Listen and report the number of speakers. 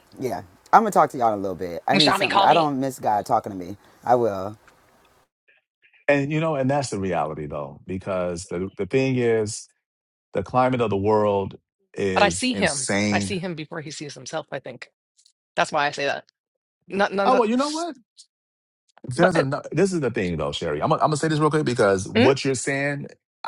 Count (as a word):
three